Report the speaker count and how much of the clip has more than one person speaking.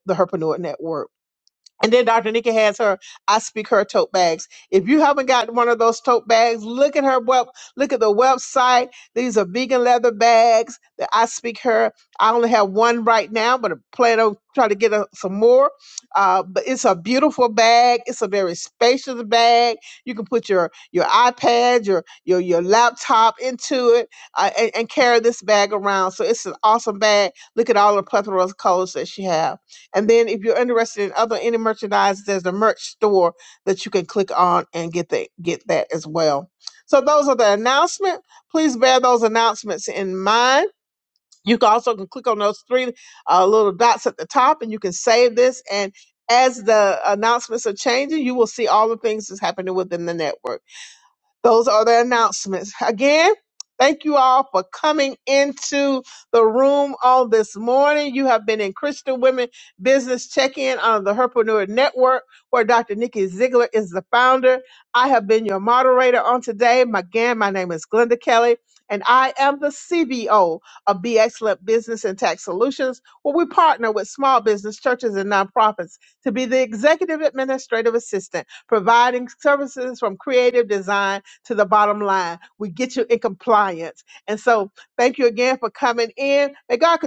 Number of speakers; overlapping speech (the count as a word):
one, no overlap